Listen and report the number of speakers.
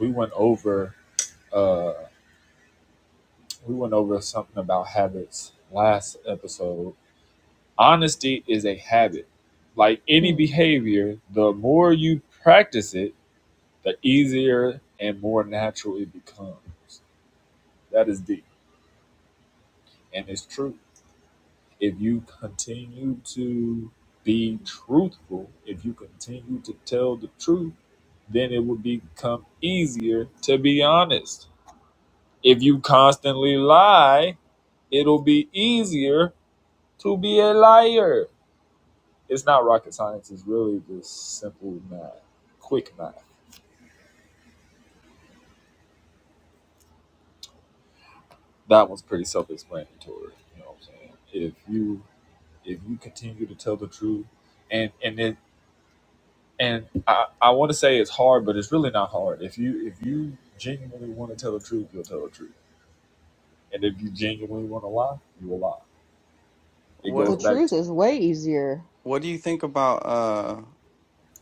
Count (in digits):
3